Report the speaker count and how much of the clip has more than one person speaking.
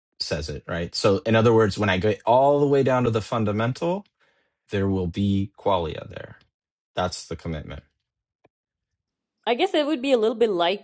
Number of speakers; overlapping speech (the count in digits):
2, no overlap